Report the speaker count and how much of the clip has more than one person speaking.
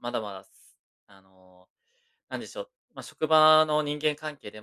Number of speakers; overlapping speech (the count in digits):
1, no overlap